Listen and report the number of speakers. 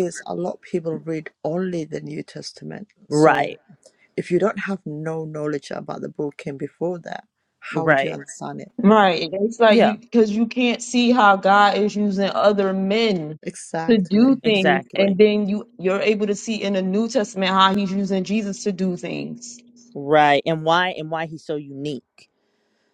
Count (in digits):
3